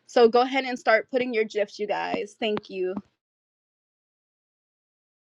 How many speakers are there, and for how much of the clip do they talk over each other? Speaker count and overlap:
1, no overlap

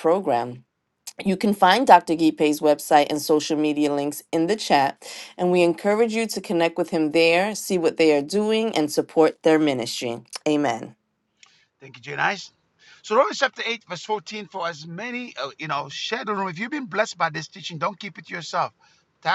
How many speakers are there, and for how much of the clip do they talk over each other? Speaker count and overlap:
2, no overlap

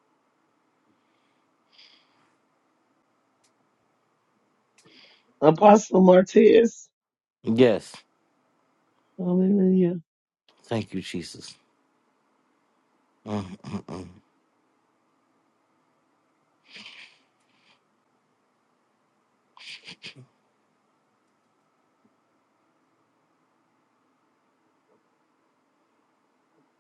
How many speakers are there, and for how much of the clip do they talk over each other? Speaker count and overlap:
2, no overlap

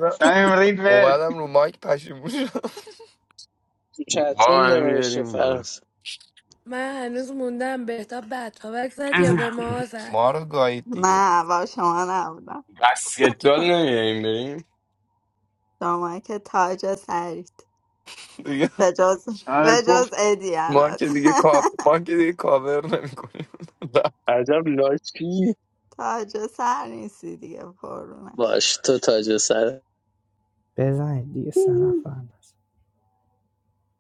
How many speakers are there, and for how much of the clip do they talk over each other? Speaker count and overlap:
7, about 9%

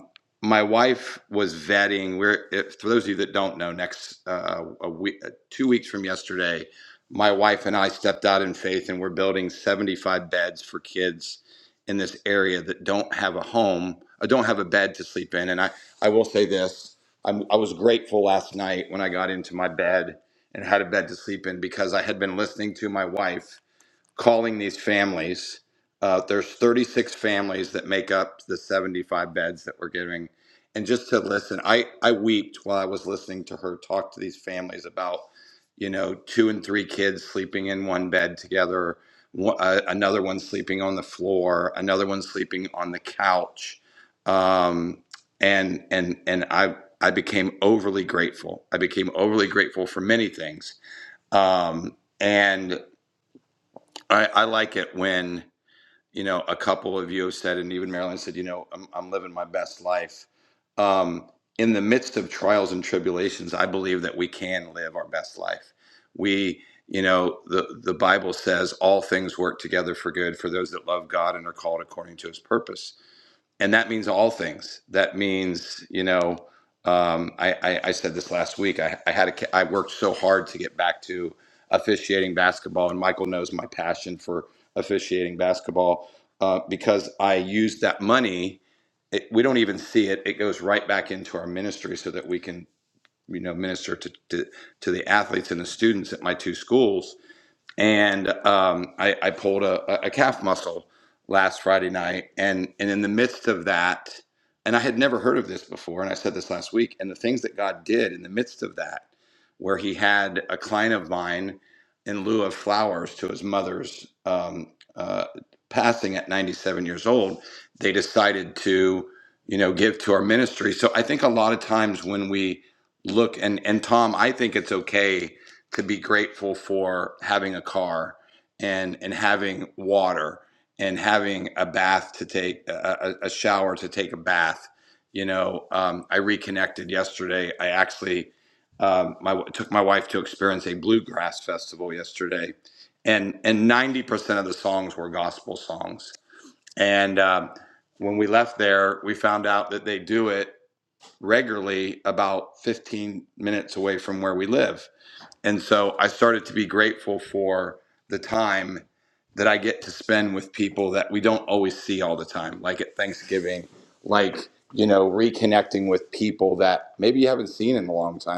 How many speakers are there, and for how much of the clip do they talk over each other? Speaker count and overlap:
1, no overlap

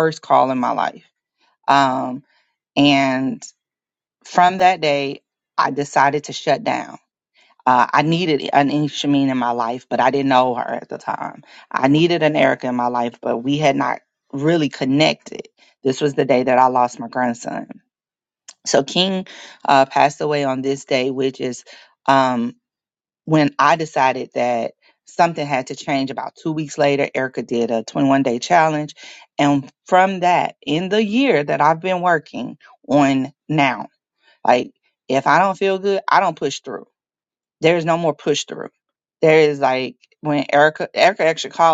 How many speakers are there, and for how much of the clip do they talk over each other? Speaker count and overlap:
1, no overlap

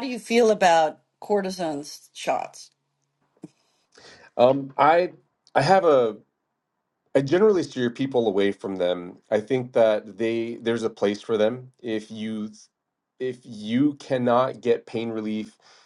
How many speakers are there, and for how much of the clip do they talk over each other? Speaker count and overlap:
2, no overlap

